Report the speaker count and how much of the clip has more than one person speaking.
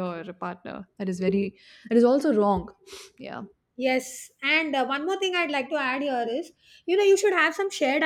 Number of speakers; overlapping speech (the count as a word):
two, no overlap